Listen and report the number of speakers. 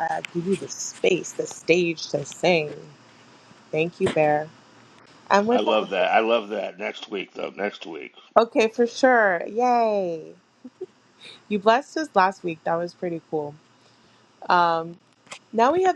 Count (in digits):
2